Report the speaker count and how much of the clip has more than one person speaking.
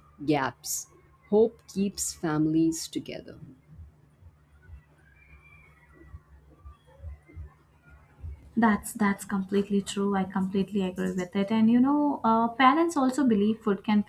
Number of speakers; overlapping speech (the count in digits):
2, no overlap